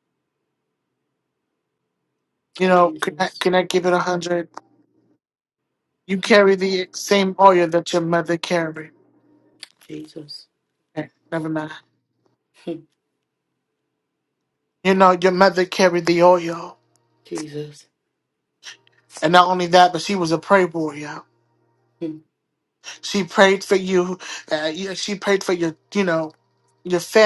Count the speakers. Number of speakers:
two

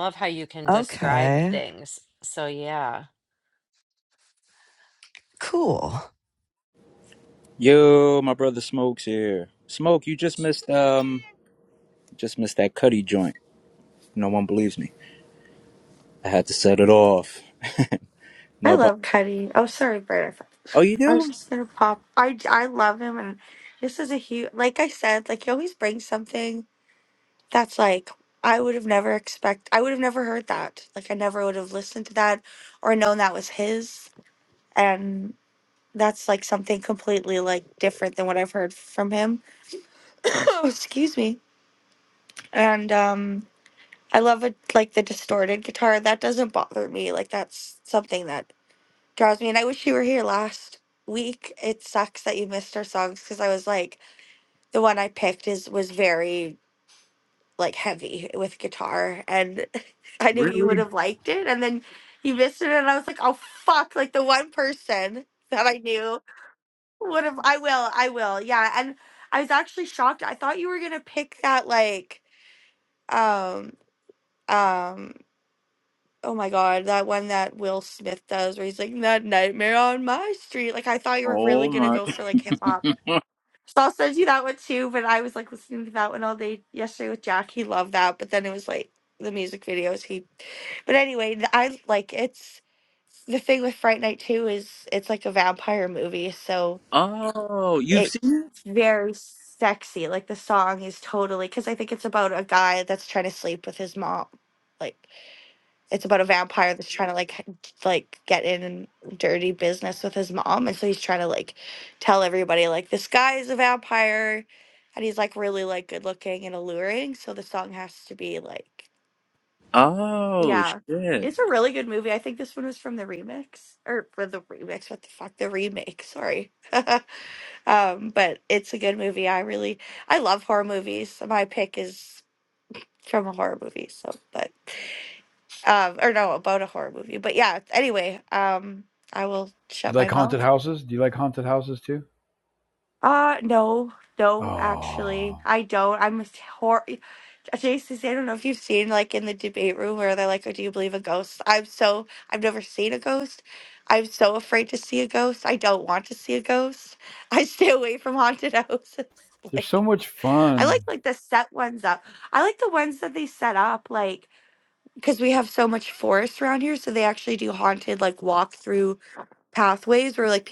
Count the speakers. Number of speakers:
five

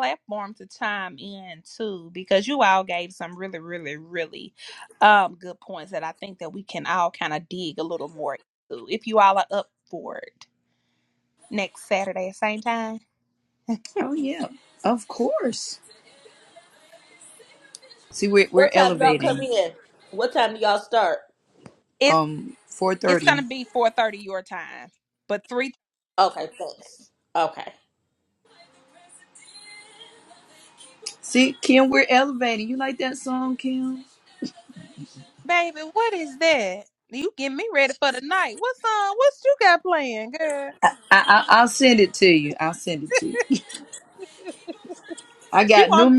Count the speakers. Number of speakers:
three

